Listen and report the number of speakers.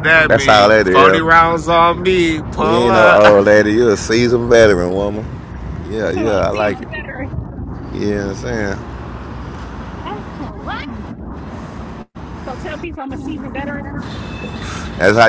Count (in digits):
3